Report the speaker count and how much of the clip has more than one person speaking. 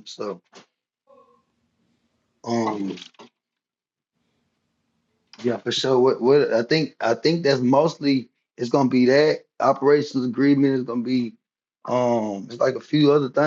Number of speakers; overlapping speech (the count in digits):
1, no overlap